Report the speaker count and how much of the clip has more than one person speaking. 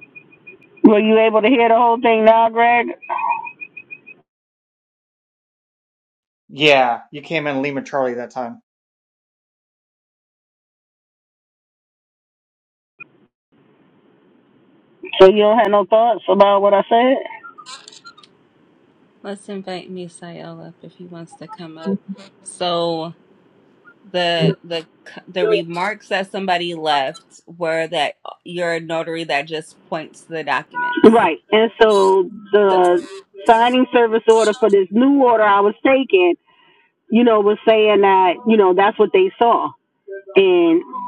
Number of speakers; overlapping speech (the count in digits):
3, about 1%